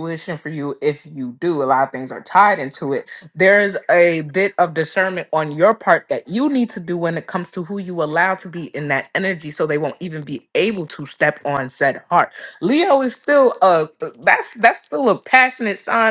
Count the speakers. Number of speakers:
1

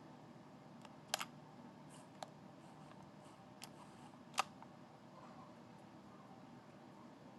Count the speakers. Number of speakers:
0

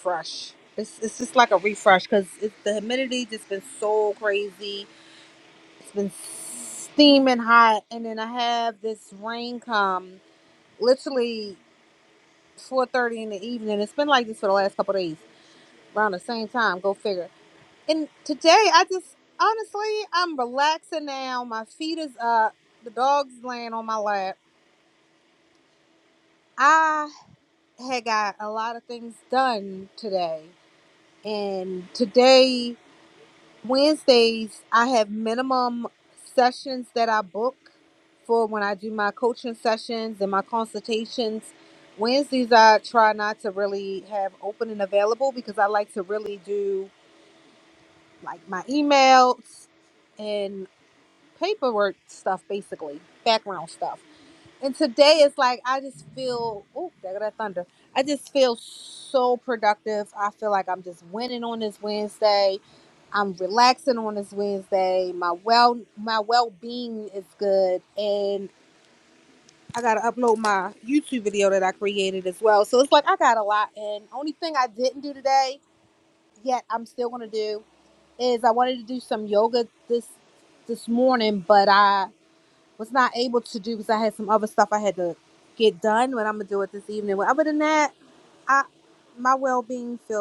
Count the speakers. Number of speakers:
1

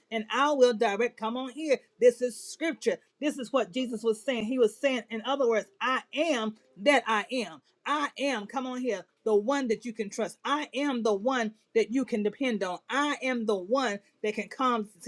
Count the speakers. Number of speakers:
1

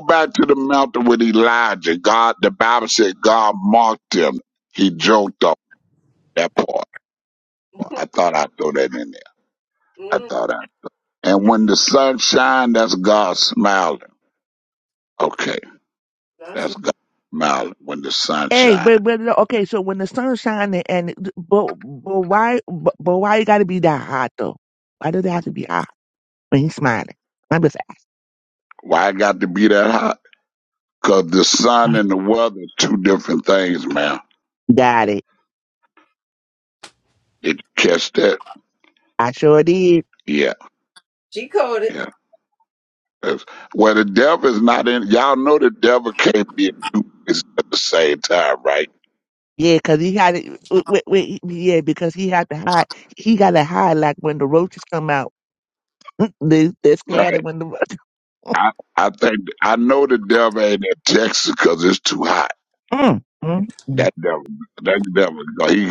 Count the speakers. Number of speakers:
3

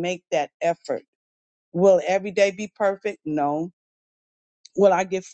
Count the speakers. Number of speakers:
1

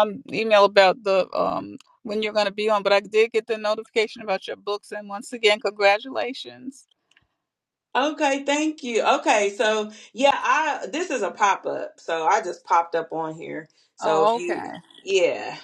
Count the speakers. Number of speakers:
2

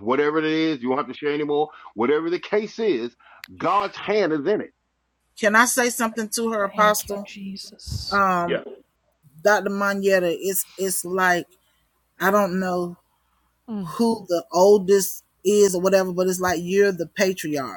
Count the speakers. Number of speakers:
3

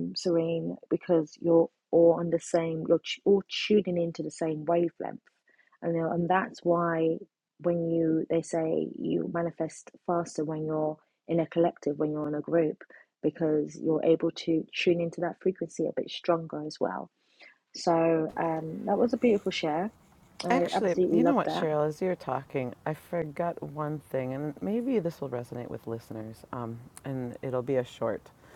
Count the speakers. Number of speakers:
2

